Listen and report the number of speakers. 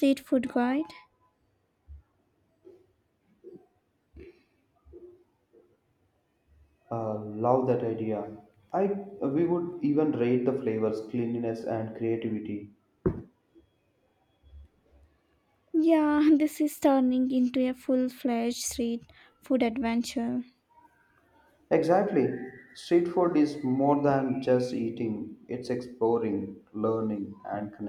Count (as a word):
two